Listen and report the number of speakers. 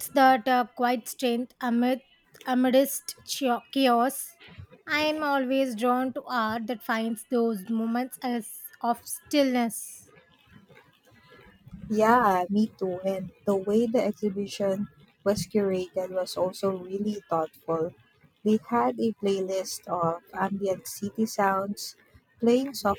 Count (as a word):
two